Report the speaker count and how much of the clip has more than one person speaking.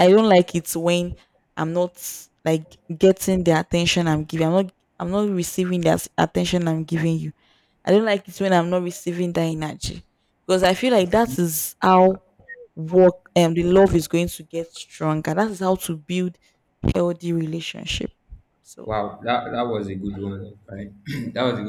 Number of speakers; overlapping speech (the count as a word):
two, about 1%